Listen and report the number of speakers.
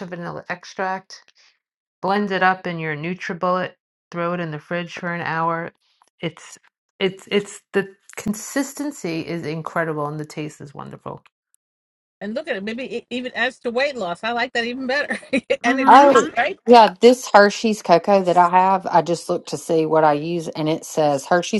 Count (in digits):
3